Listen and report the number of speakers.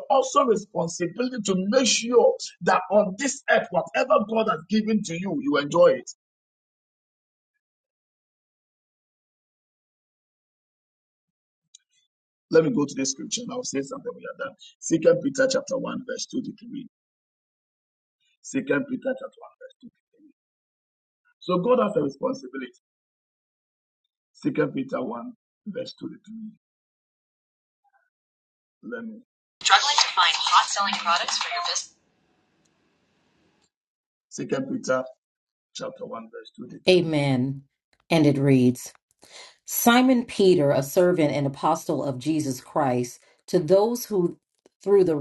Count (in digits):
3